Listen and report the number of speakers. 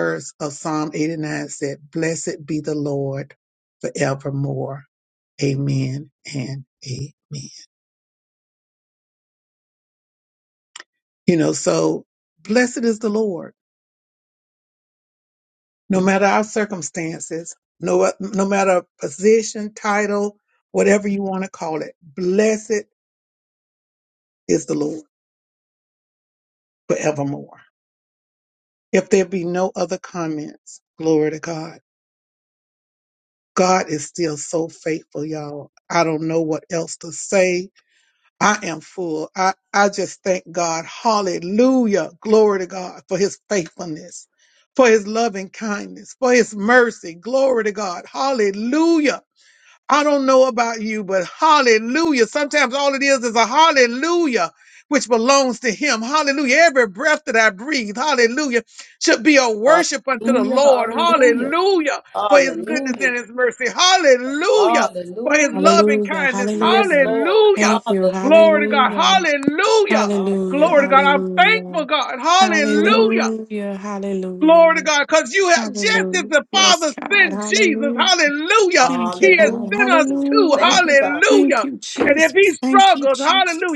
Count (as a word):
three